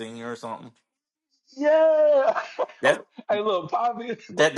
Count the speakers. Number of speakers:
two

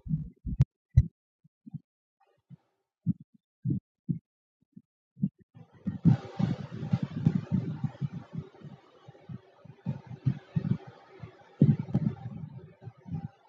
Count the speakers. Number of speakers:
zero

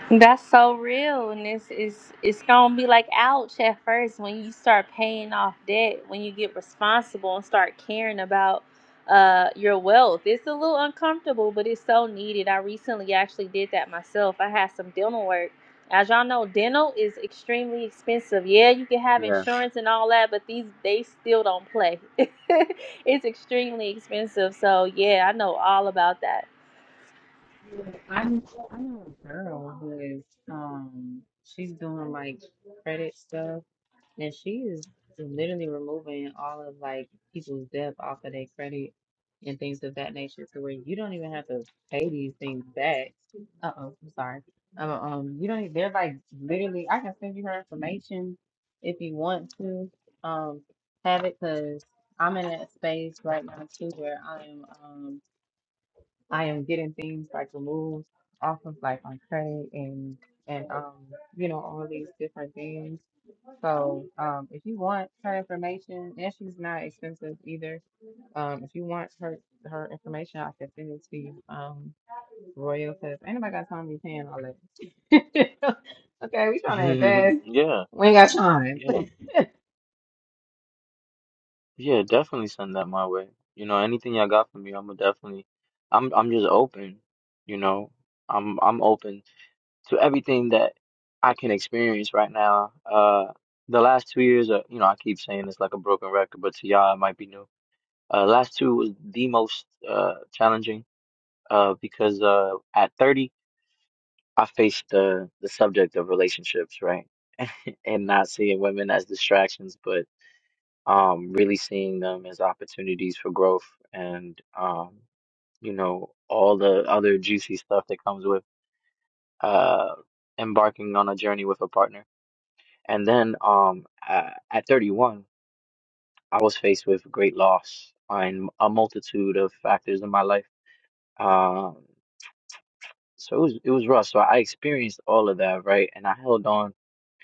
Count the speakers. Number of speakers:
three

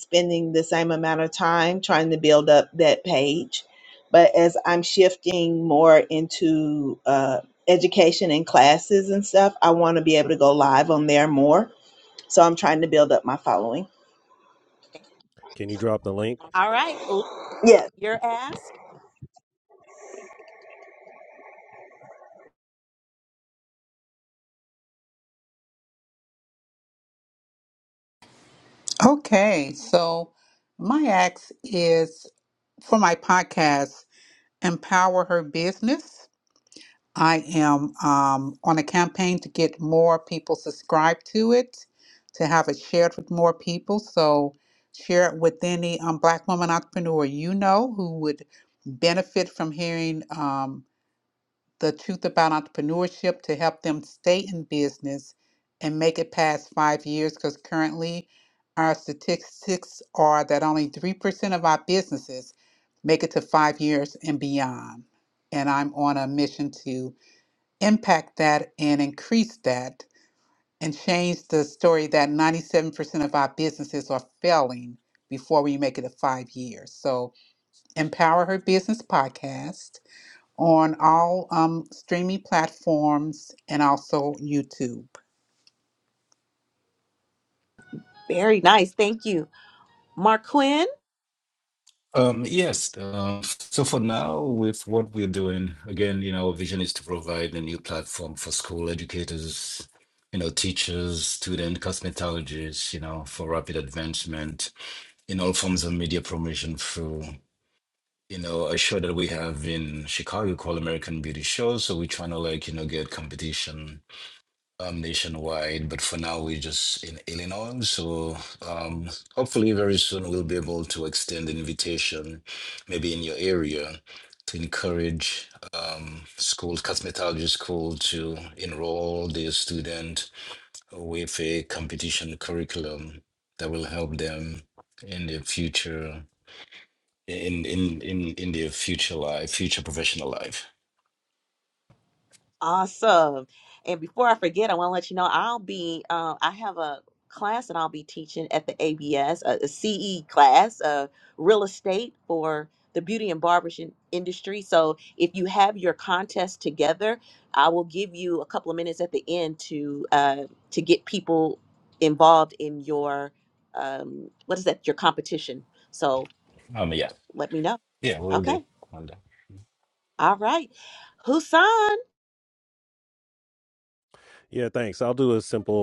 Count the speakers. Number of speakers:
five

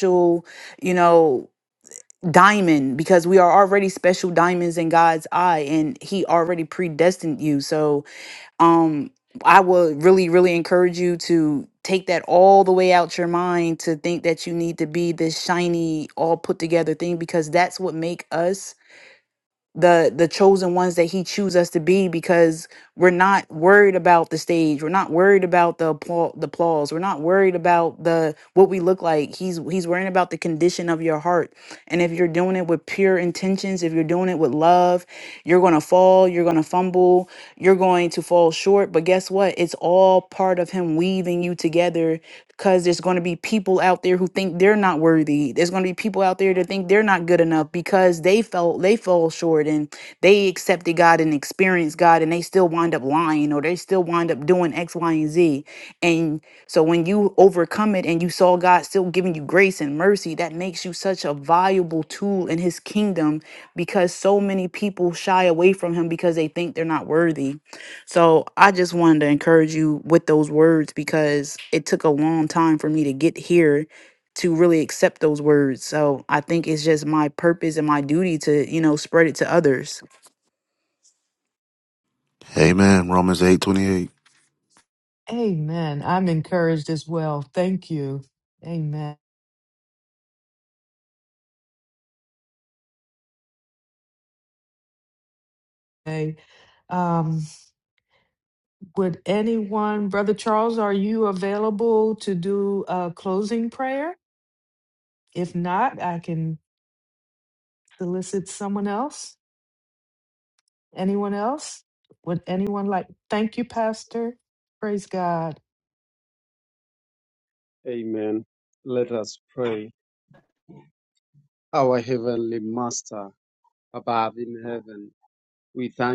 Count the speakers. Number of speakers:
four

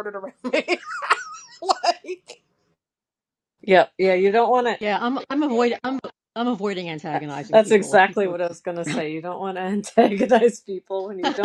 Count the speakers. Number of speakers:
three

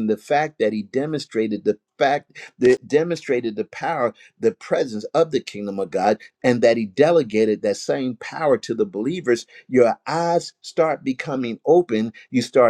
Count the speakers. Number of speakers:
one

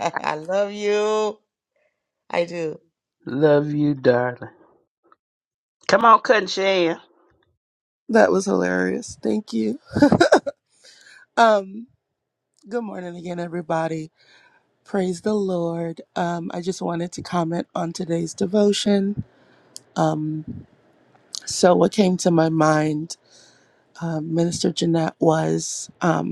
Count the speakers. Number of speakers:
three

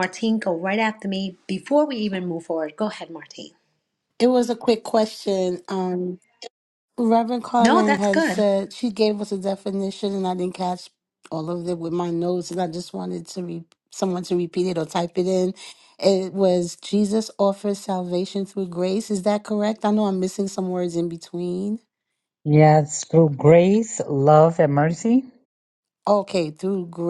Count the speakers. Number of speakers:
three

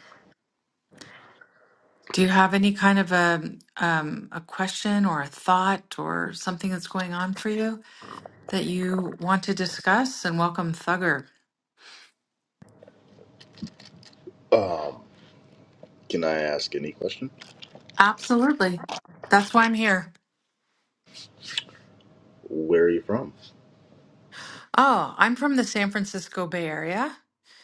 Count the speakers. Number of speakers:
two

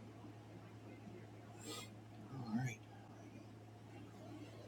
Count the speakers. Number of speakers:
zero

